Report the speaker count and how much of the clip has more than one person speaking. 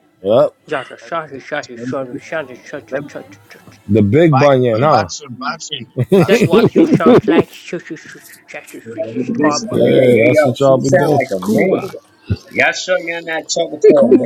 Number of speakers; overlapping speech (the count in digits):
4, about 39%